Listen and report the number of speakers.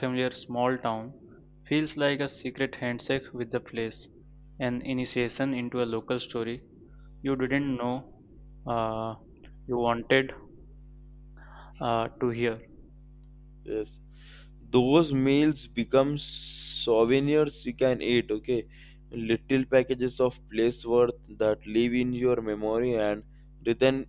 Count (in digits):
2